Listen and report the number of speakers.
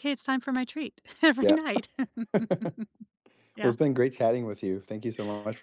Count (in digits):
2